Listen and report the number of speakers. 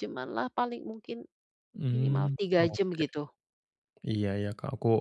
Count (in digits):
2